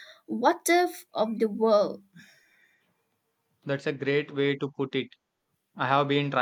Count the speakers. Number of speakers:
2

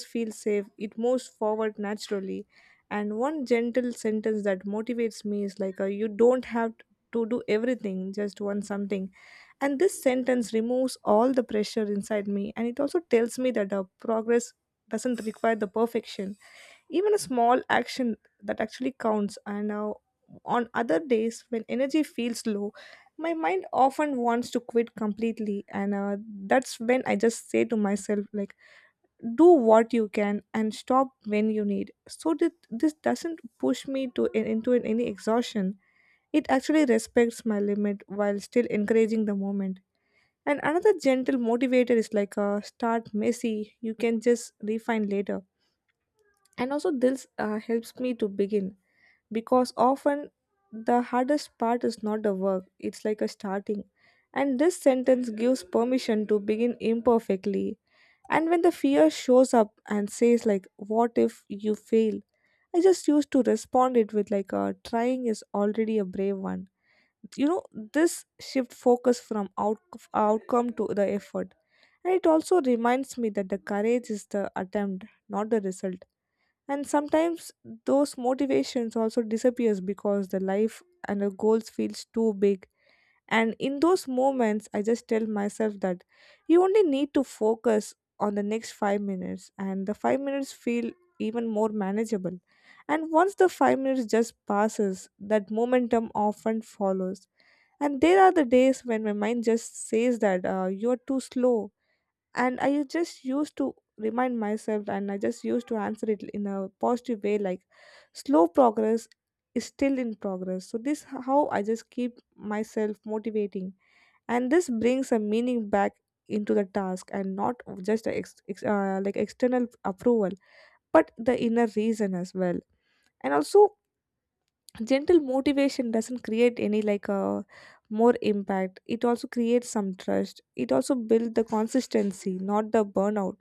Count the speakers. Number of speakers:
1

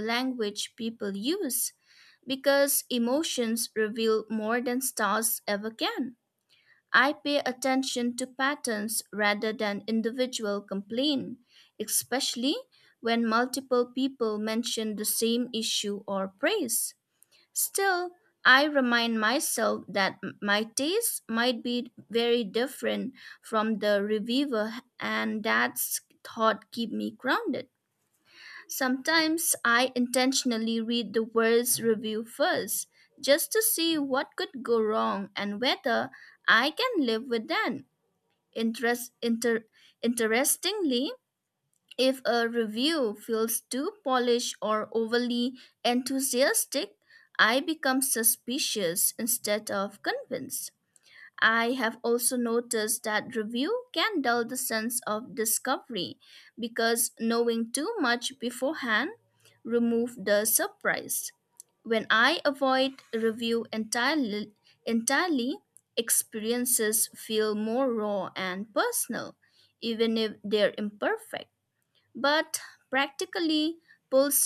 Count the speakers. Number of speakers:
1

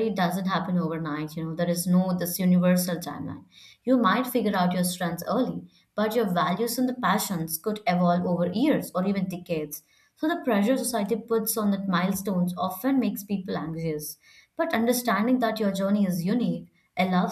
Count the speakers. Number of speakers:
1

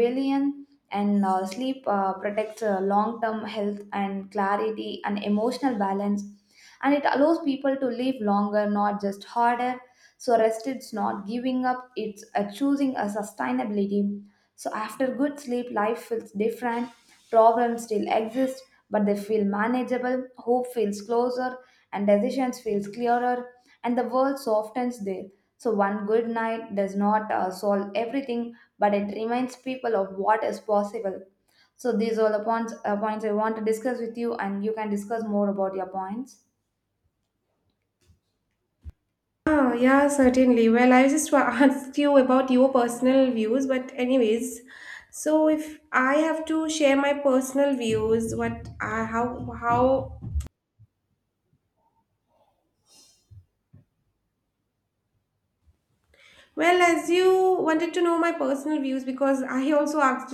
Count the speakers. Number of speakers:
2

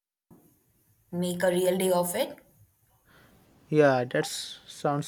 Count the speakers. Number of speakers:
2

